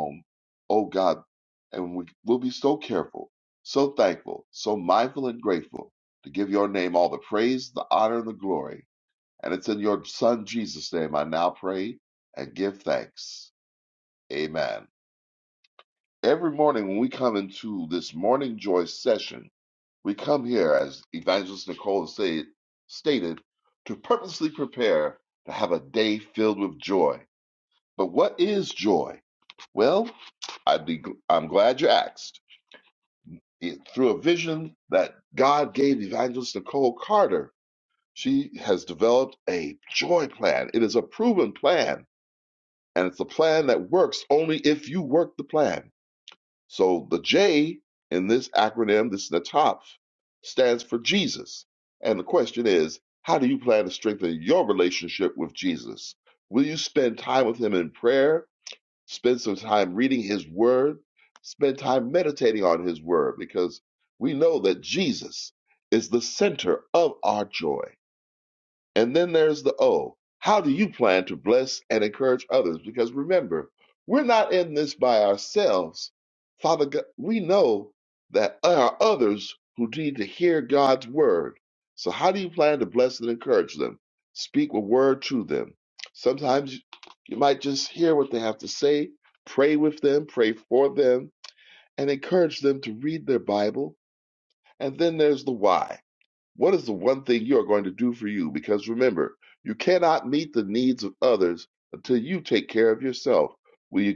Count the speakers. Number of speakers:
one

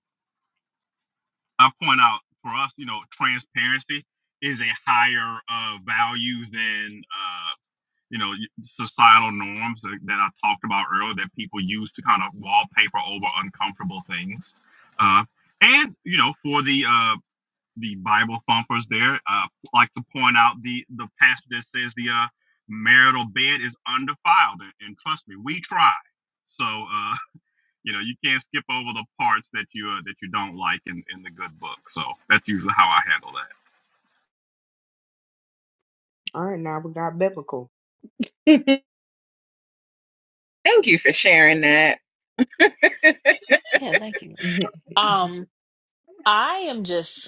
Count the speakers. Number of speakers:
four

